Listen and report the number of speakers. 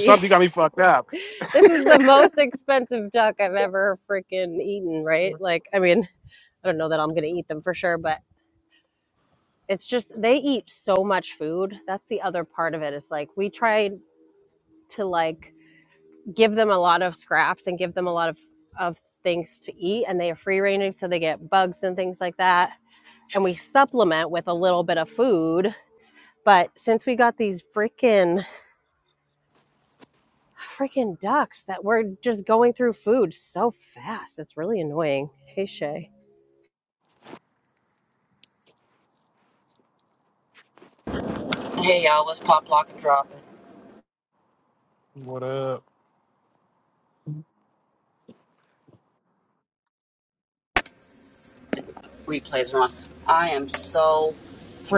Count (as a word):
three